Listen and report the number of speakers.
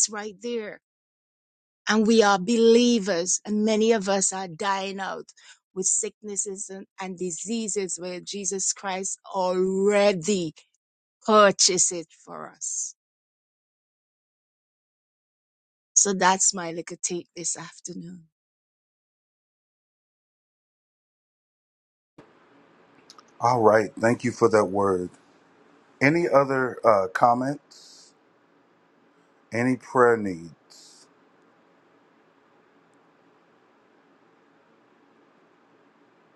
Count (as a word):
two